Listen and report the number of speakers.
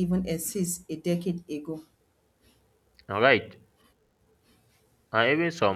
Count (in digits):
2